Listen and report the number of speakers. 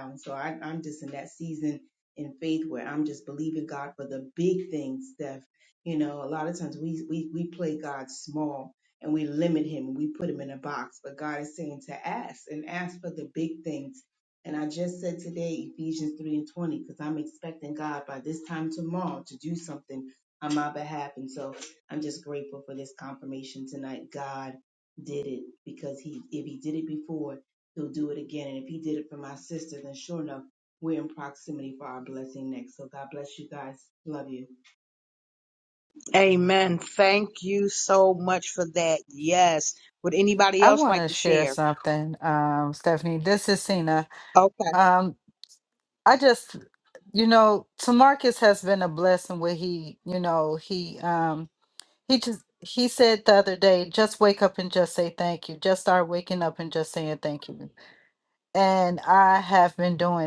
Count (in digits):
3